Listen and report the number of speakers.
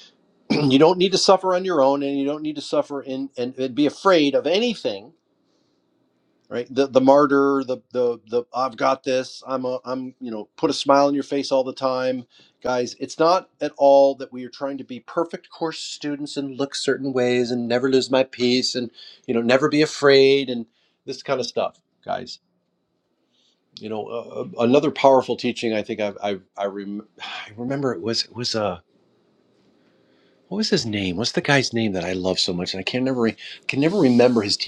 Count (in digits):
1